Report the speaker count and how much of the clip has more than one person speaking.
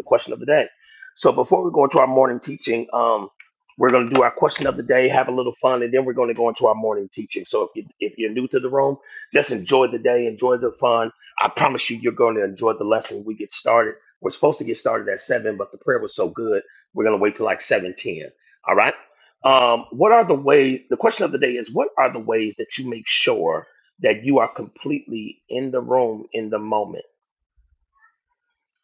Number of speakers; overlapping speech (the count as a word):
one, no overlap